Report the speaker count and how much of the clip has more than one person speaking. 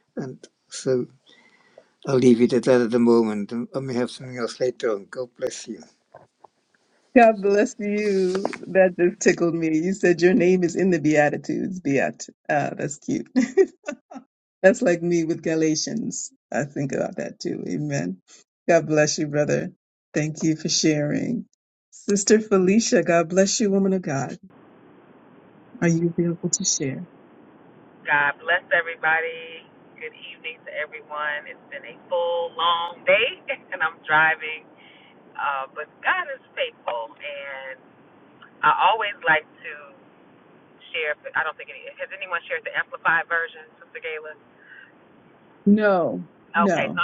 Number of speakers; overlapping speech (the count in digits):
3, about 1%